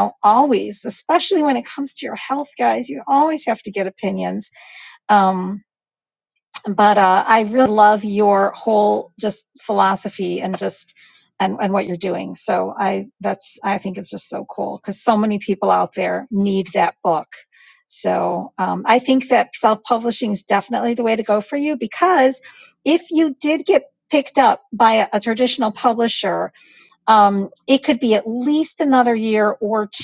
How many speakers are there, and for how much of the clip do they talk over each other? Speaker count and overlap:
1, no overlap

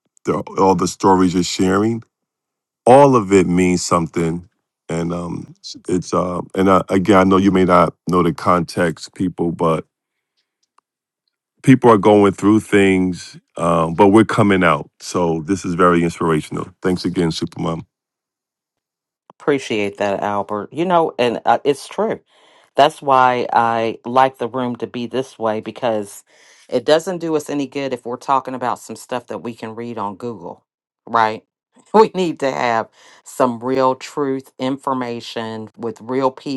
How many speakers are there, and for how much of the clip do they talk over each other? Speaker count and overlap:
2, no overlap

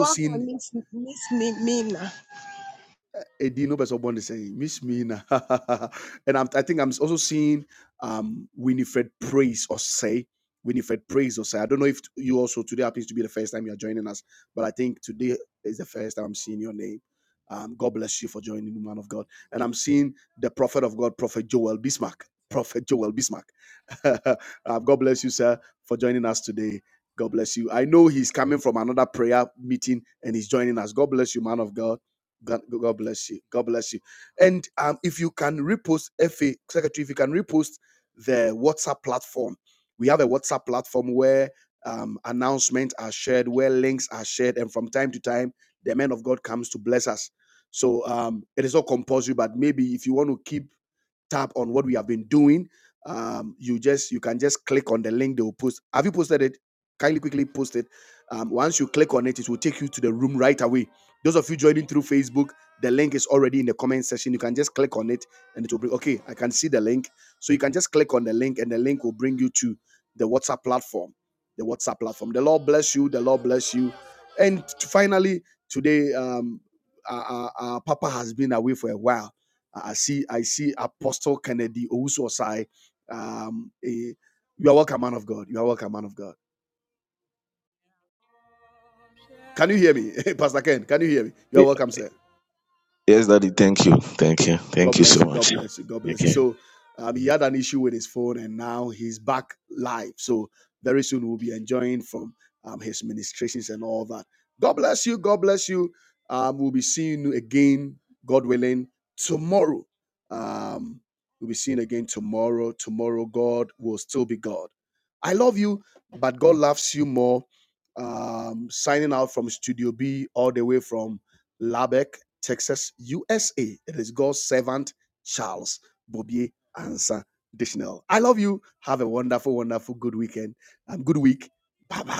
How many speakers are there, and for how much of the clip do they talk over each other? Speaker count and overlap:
3, about 1%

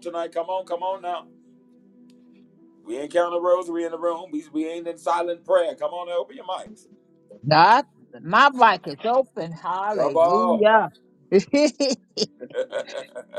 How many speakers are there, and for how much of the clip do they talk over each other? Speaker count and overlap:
2, about 5%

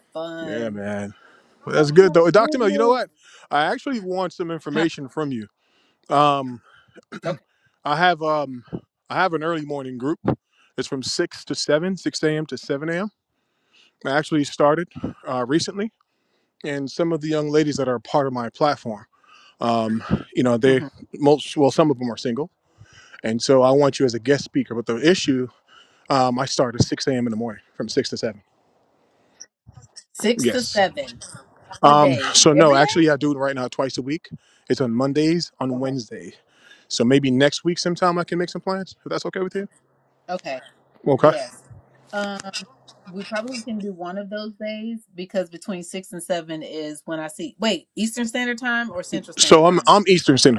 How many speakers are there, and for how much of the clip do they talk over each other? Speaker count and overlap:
2, about 9%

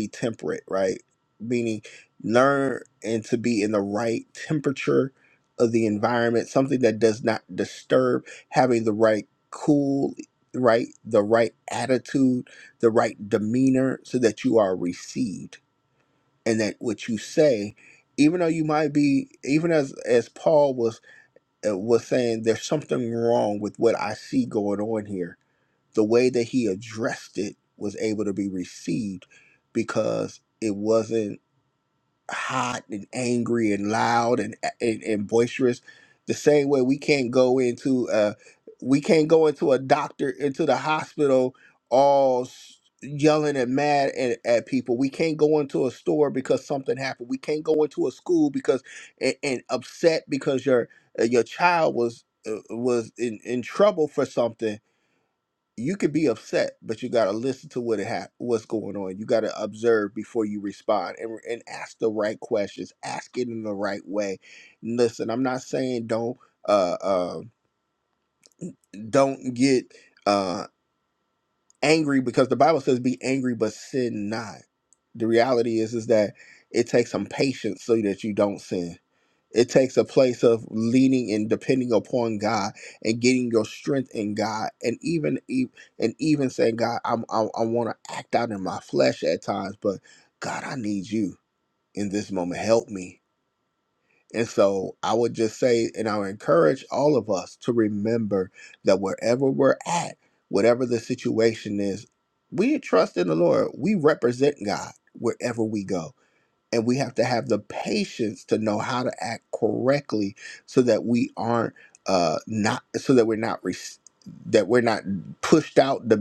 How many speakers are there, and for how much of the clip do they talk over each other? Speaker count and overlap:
1, no overlap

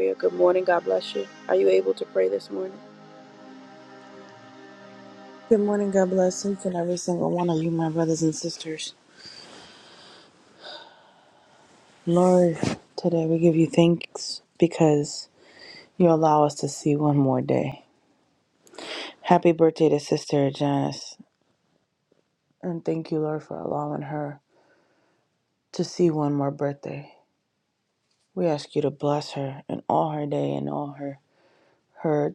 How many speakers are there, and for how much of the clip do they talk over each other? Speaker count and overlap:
2, no overlap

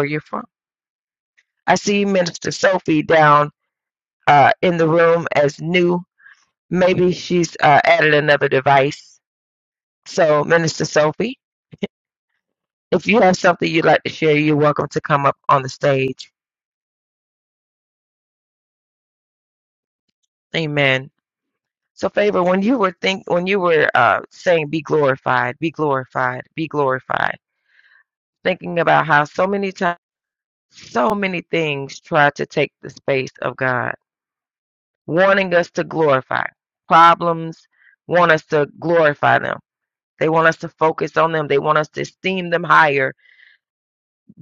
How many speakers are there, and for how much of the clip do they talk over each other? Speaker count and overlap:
1, no overlap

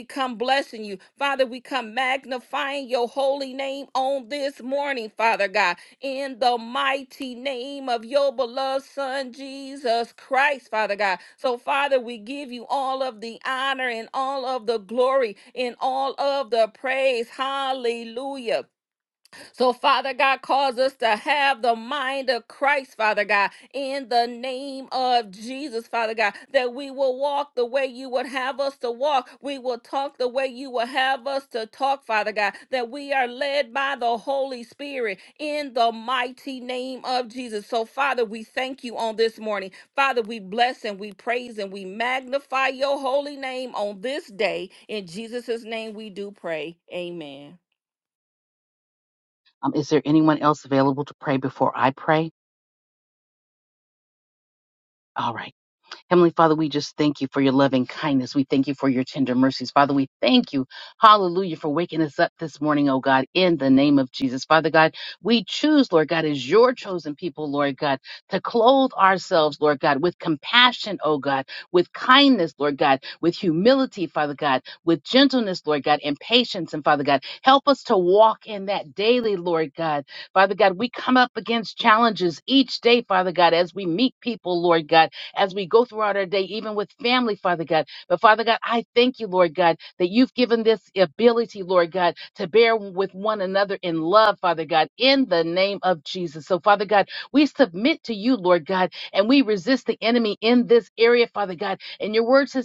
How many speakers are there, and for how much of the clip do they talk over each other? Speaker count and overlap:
2, no overlap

